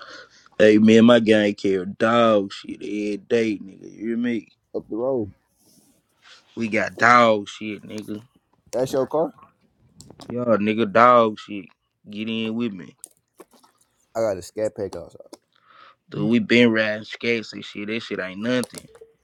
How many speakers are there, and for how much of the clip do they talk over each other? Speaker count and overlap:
two, no overlap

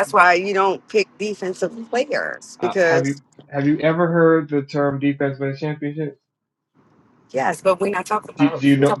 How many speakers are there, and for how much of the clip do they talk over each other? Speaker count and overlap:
two, about 12%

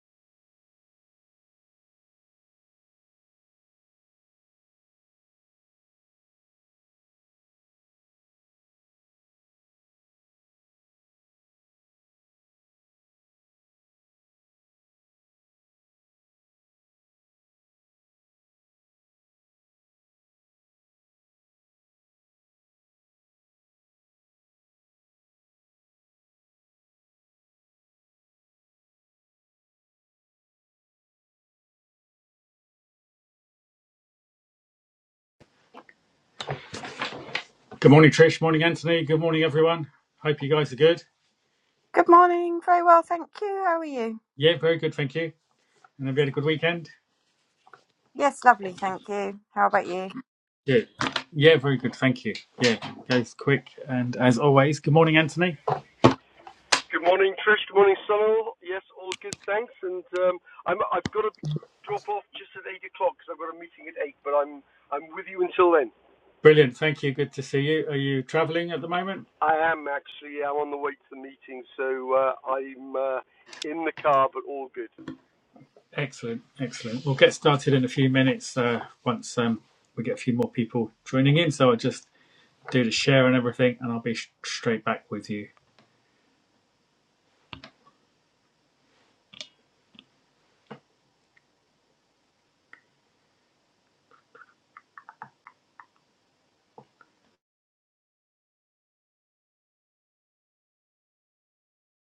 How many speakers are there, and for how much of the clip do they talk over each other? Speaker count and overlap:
three, no overlap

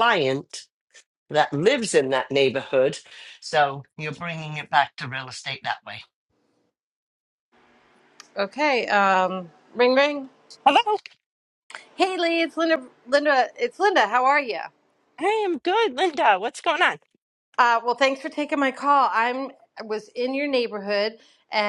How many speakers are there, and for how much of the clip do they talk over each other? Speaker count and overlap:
three, no overlap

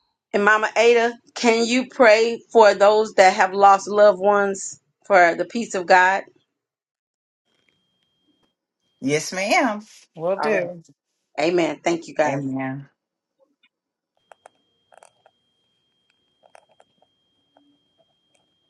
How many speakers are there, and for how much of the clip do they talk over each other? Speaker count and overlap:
two, about 2%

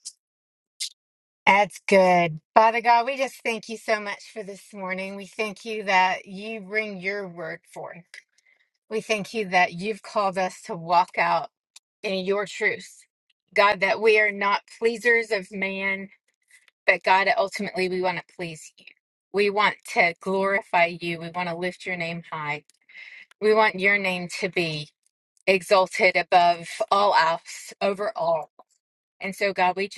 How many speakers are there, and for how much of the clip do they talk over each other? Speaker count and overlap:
one, no overlap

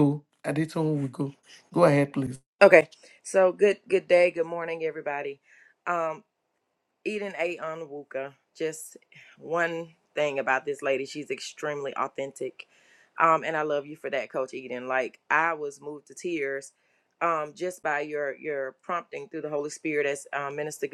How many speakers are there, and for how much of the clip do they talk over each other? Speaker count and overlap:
two, no overlap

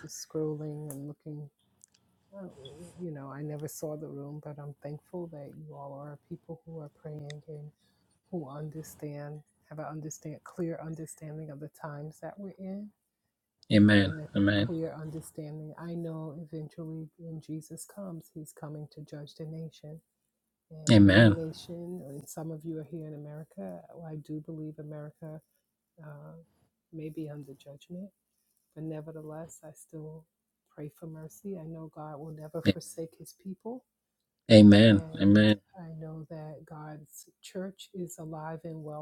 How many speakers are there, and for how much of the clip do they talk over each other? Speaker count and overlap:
two, about 5%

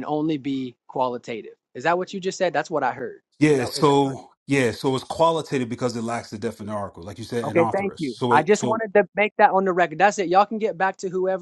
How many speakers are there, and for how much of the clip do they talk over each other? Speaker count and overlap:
two, about 16%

